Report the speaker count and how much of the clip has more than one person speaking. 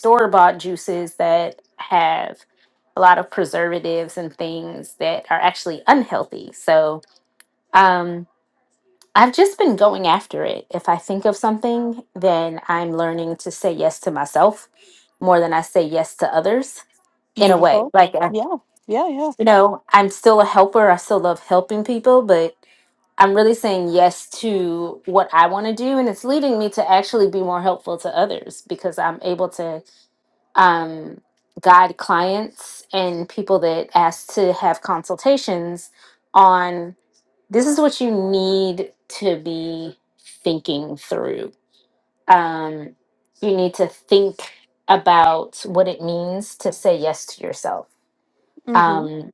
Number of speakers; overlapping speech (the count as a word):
two, about 2%